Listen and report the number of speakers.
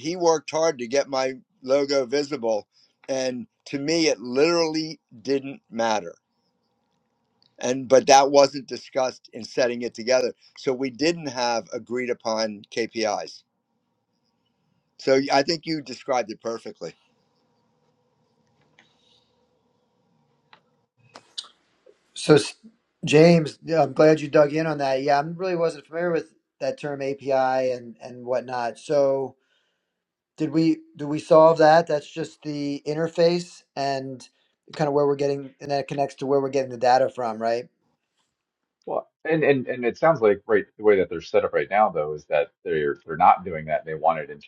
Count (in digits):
3